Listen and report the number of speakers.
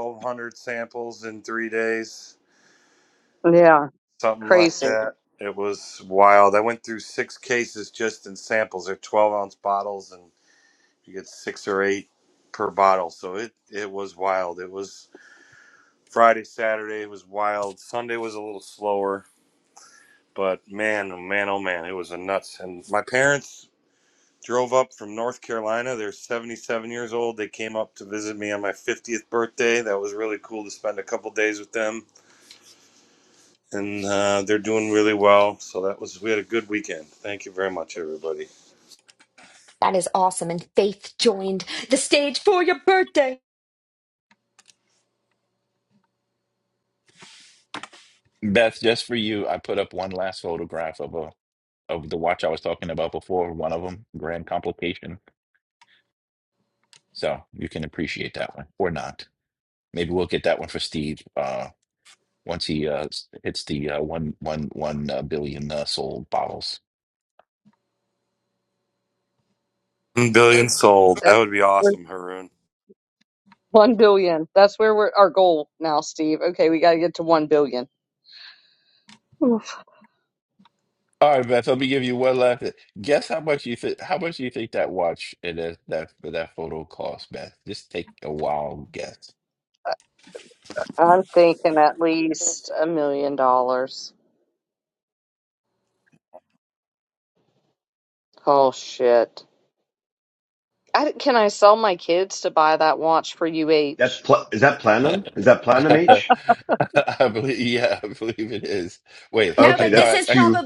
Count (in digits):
5